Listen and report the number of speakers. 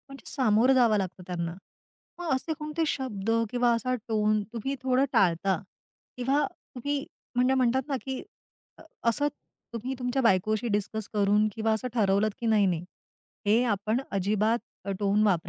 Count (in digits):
1